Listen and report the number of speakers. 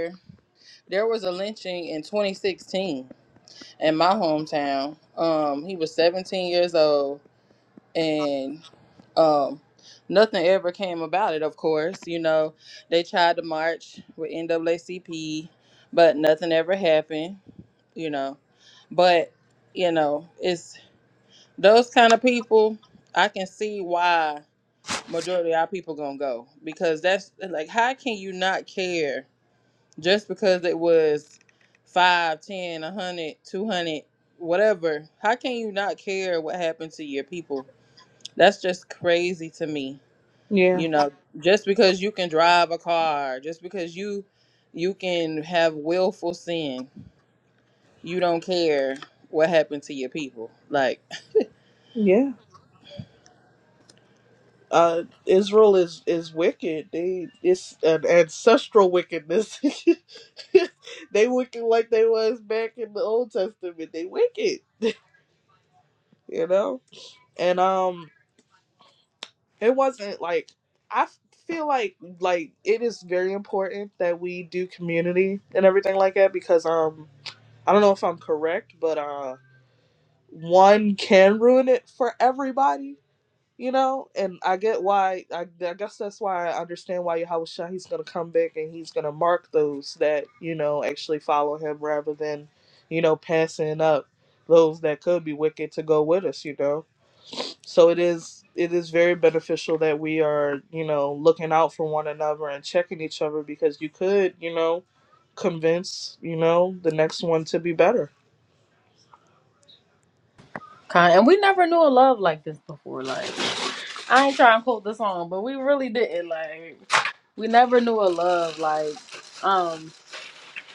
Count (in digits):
3